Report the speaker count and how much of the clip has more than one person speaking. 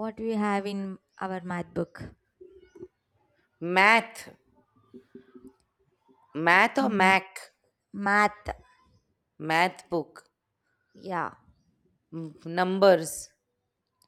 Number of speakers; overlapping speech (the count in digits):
2, about 2%